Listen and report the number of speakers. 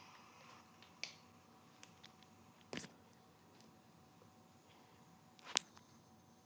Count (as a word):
zero